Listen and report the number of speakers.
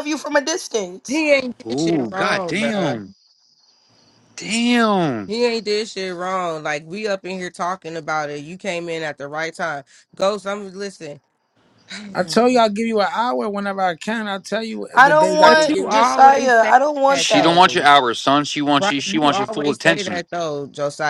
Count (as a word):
four